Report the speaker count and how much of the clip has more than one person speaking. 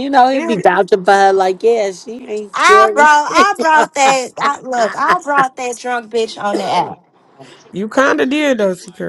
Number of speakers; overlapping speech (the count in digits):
3, about 13%